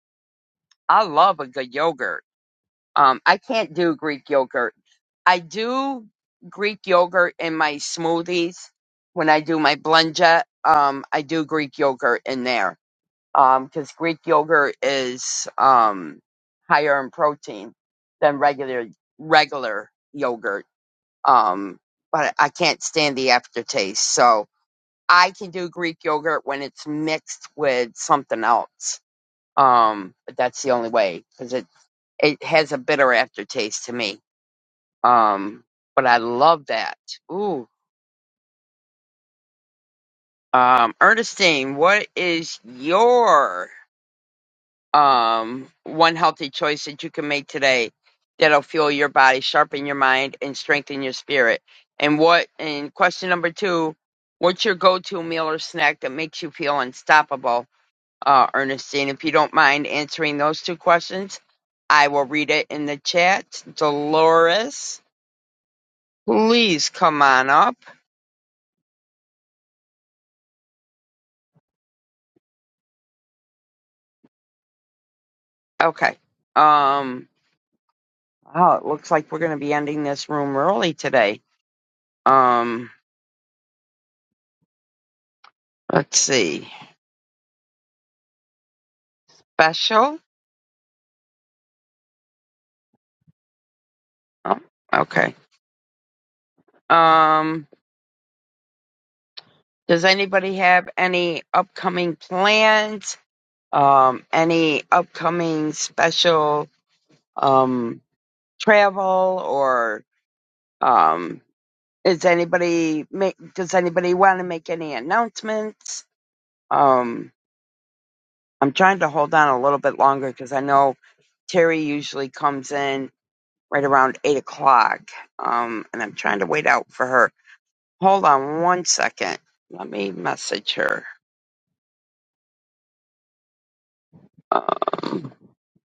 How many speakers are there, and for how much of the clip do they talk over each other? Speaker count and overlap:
1, no overlap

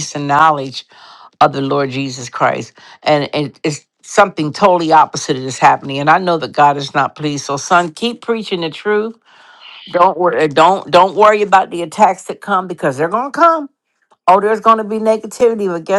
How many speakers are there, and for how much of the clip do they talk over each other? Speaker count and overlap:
1, no overlap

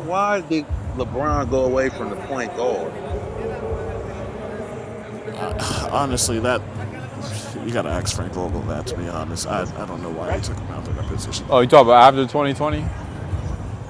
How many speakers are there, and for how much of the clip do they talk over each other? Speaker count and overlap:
3, under 1%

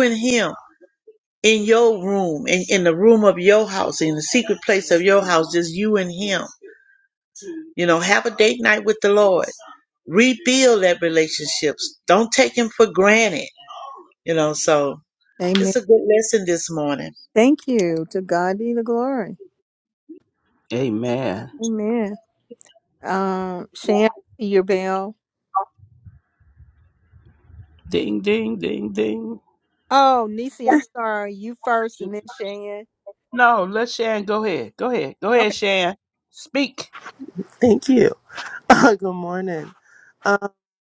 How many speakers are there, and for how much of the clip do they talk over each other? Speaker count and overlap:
4, under 1%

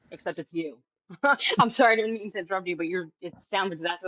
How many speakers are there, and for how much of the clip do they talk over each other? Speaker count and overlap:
1, no overlap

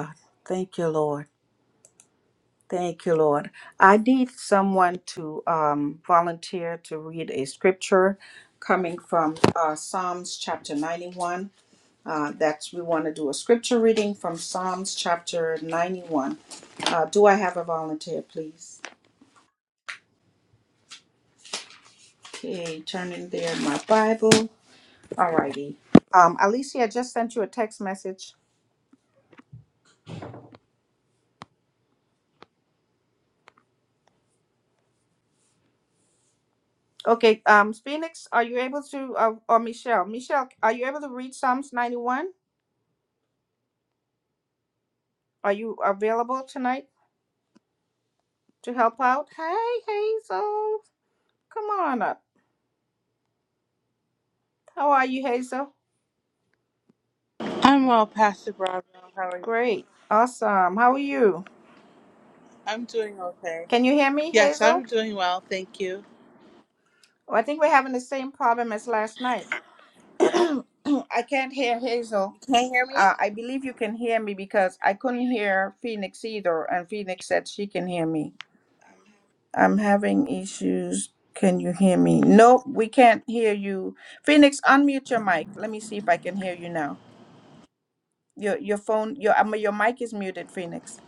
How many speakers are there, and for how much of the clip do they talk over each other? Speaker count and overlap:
2, about 1%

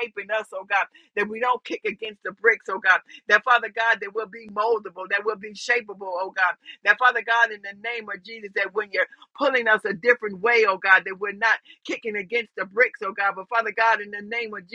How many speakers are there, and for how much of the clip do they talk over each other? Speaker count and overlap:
1, no overlap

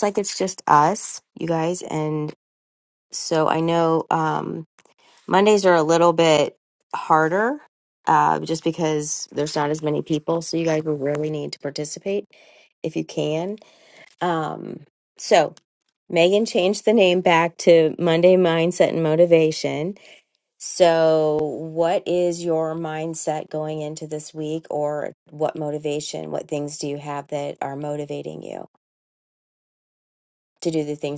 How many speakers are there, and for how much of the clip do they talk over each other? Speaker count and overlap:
1, no overlap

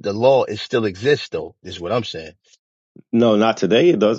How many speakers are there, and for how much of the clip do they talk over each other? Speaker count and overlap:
2, no overlap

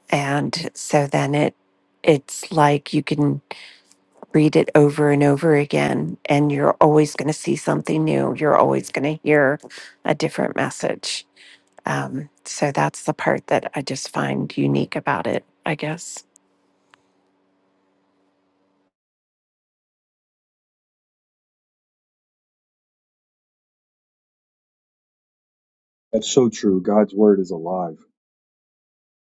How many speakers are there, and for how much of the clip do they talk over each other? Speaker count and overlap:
2, no overlap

